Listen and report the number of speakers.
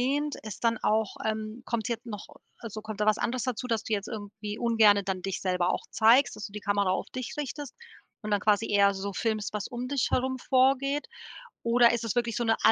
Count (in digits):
1